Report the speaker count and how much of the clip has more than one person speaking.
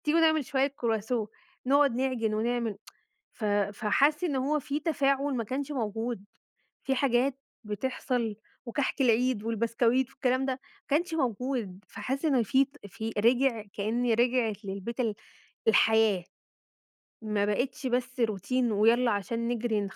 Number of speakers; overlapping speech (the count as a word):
one, no overlap